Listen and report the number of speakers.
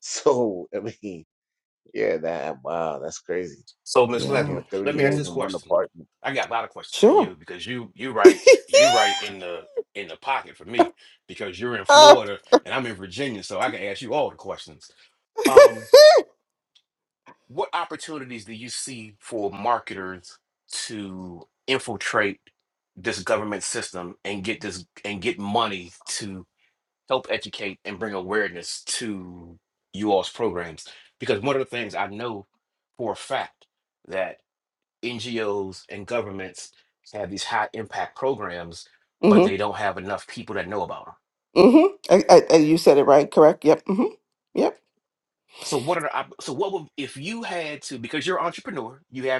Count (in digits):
3